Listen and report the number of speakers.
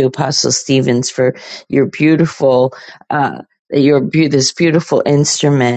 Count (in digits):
1